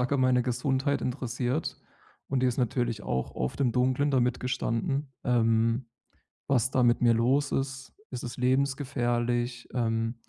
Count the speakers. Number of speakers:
one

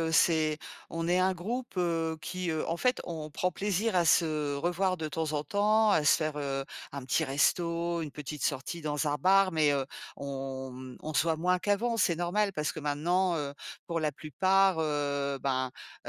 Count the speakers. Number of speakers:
one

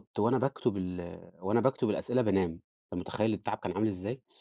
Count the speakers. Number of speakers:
one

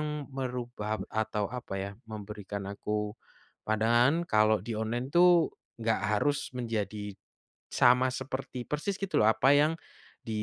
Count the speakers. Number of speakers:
one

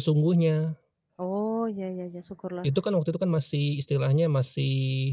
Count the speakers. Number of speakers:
two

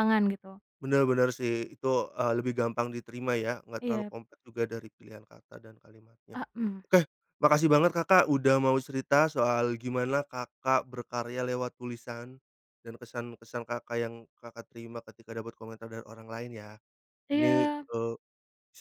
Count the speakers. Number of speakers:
two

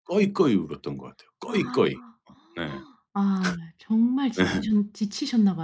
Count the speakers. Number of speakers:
two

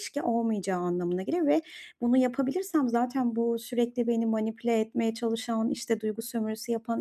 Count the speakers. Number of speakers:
one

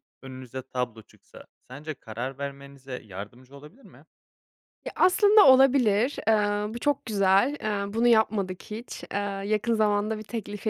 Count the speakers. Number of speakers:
two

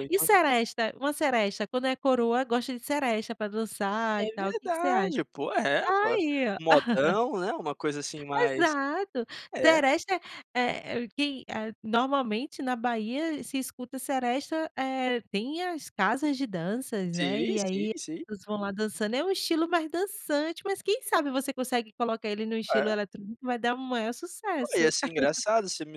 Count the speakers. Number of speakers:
two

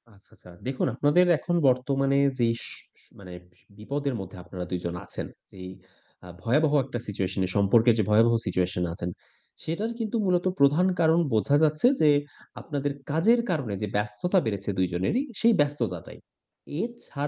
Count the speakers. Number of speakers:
one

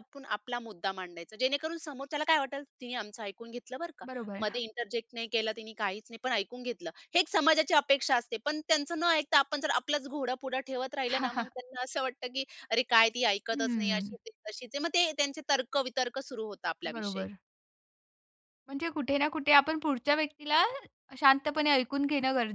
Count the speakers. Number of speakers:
two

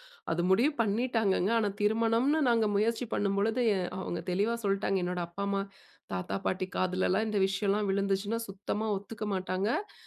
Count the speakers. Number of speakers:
one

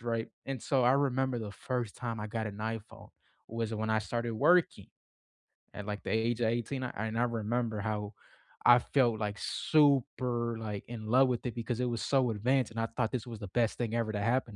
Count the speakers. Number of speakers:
one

